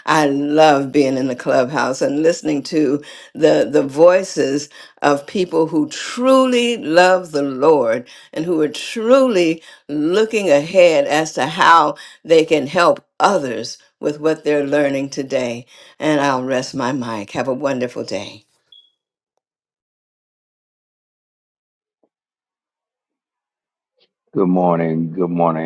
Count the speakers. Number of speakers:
two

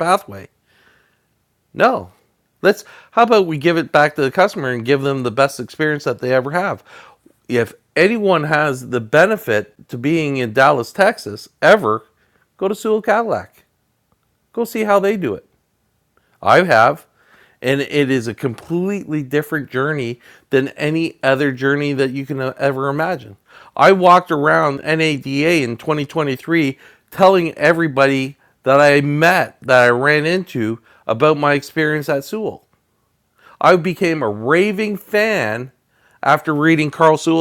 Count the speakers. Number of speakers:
one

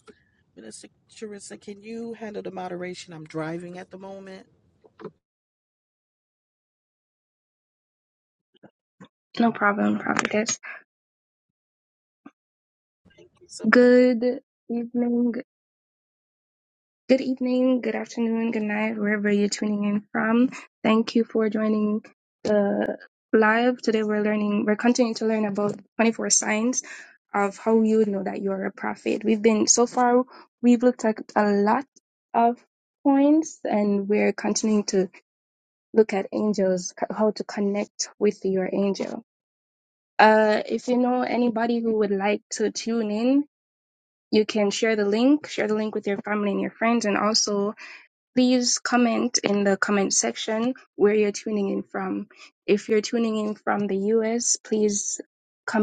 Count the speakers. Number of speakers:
two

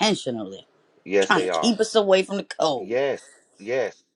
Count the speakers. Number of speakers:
two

